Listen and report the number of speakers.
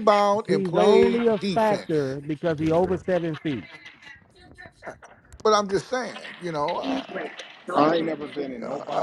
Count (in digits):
3